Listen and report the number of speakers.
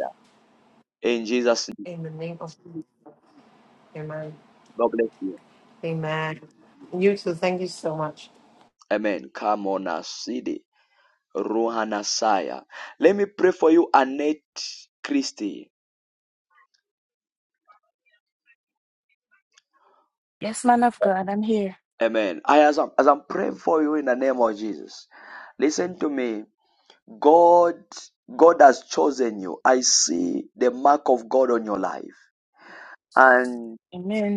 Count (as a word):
three